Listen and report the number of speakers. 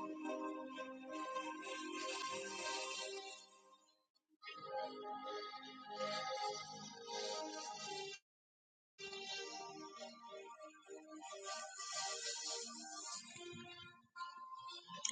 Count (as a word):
zero